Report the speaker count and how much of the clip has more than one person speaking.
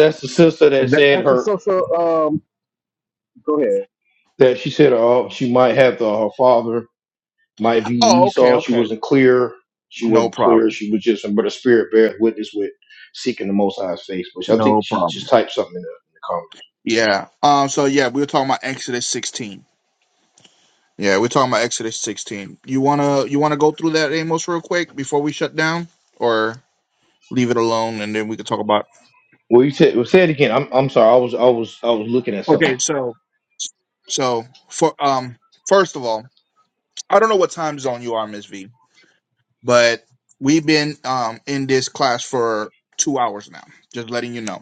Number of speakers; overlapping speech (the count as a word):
three, about 7%